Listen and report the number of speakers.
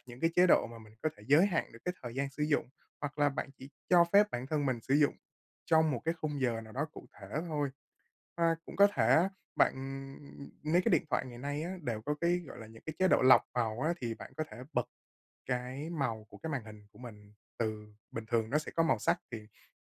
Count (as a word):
one